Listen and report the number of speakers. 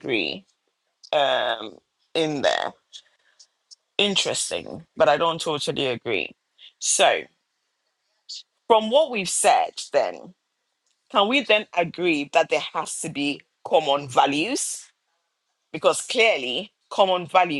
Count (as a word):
one